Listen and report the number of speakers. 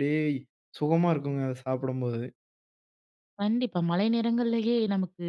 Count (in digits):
2